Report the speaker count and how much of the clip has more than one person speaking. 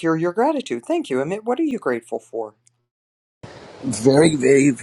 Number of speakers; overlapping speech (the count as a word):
two, no overlap